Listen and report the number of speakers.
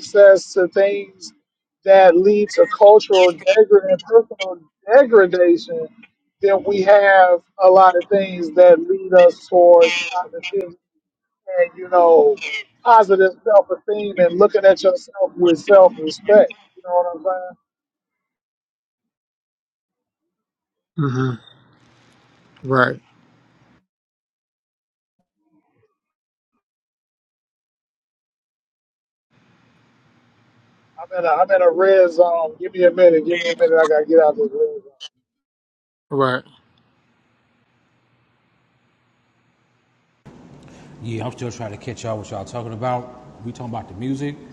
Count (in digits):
3